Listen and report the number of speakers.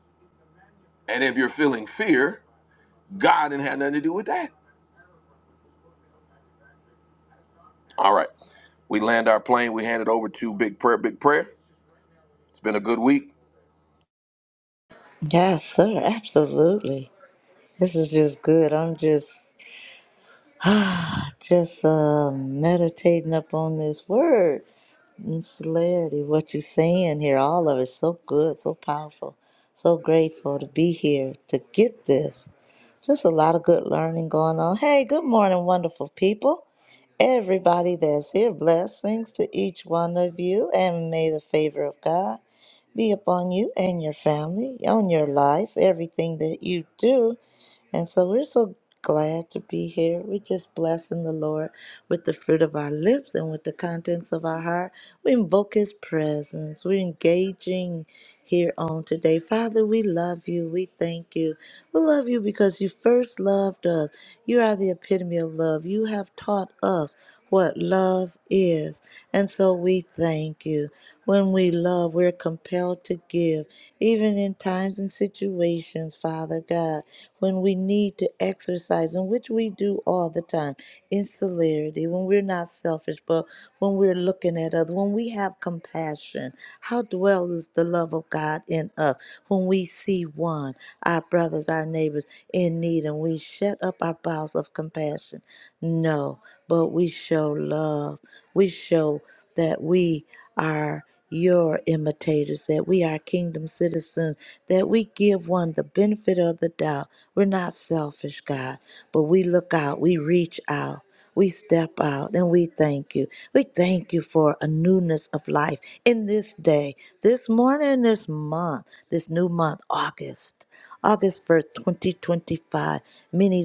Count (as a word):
two